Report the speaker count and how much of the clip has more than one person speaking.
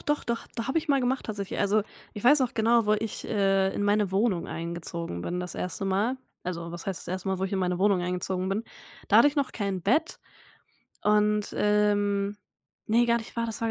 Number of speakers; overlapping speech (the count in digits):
1, no overlap